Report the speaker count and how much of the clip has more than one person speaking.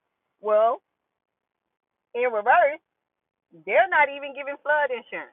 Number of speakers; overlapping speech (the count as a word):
one, no overlap